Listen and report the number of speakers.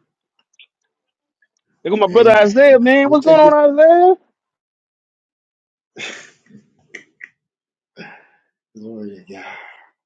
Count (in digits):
2